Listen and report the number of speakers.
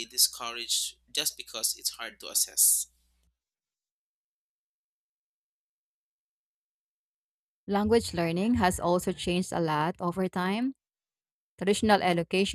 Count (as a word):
two